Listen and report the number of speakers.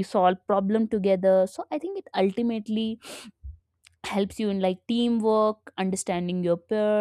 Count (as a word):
one